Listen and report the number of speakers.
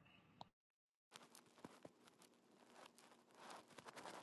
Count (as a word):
zero